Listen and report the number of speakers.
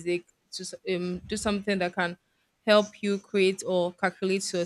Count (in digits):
1